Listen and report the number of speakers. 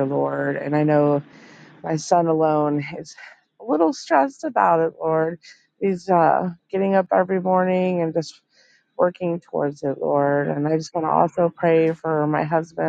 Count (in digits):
1